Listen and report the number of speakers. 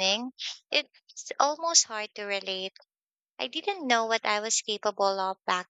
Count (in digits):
1